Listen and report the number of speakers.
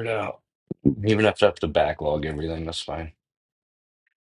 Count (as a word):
one